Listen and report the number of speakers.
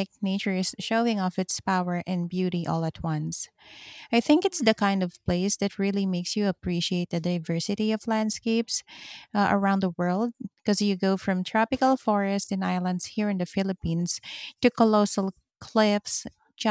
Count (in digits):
1